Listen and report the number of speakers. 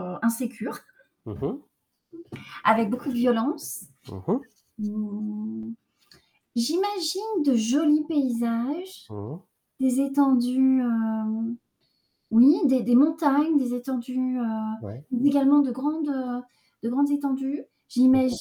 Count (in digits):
2